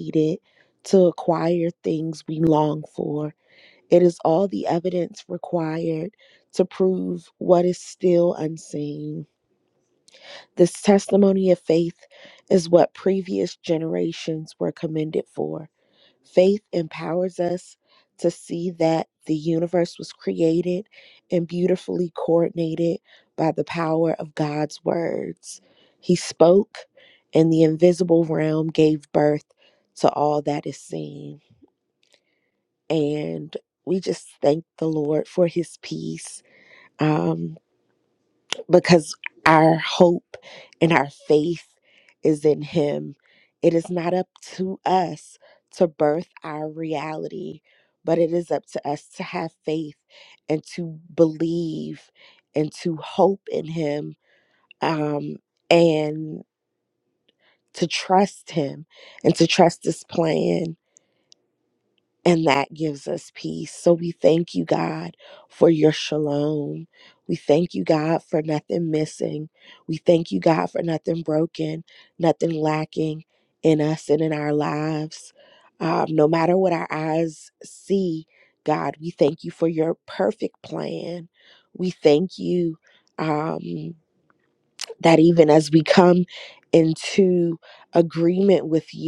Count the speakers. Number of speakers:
one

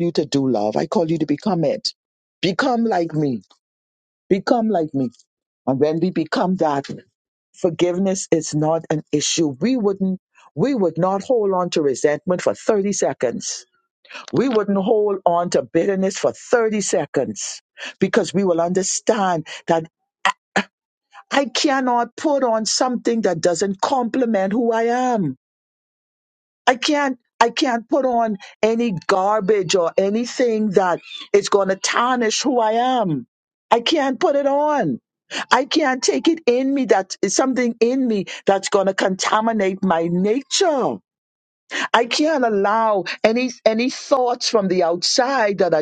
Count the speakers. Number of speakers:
one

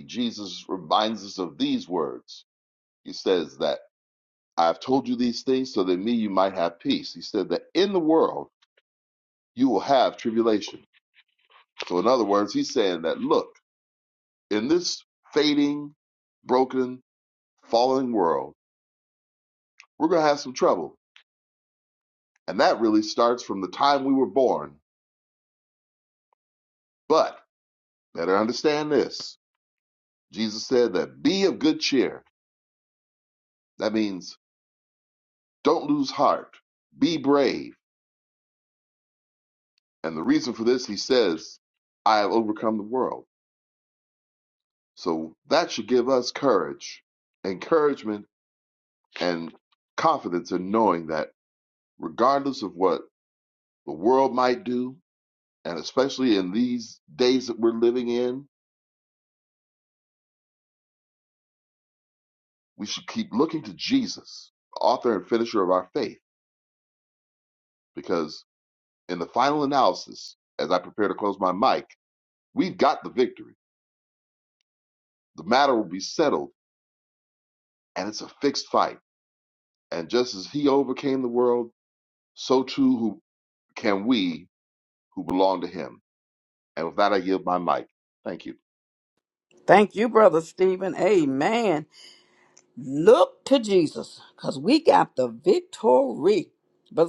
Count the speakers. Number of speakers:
two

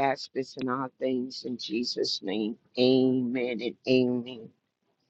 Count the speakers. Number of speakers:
one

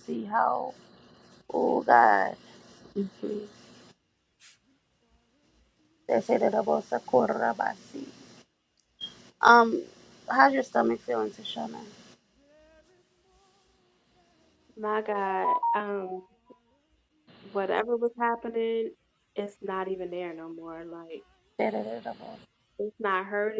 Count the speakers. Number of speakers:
two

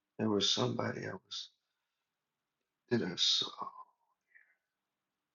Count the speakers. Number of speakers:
one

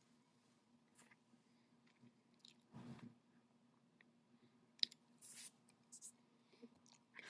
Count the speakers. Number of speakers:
zero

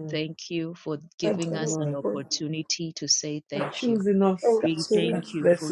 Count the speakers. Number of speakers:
three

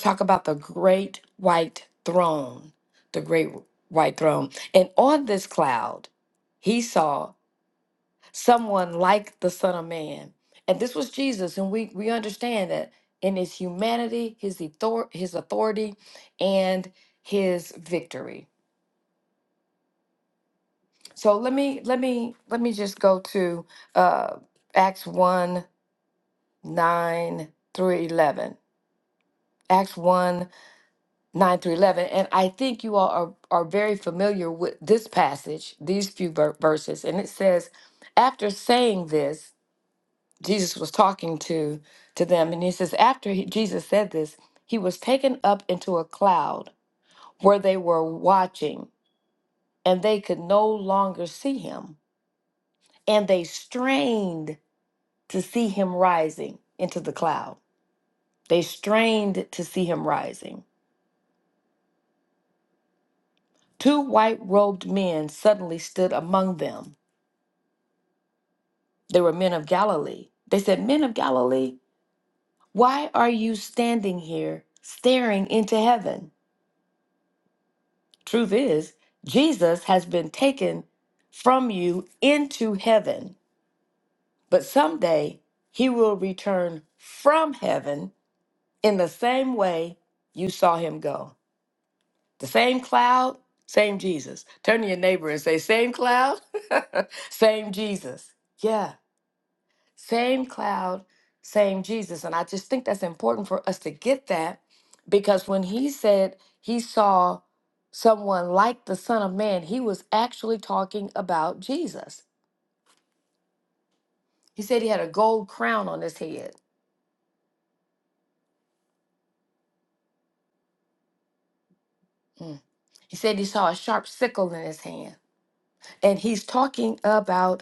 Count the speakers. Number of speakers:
one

